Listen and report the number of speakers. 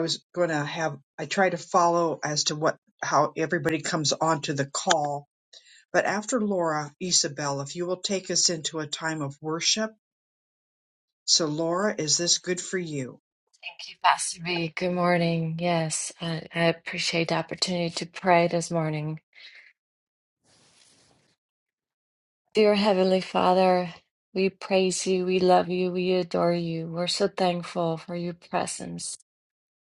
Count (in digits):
2